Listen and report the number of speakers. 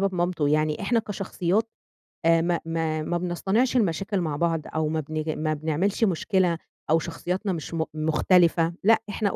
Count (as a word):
one